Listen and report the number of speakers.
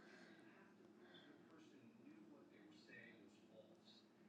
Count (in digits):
0